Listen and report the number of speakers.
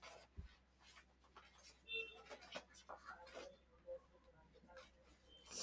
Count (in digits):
0